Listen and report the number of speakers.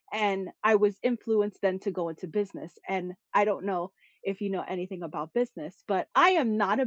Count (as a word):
one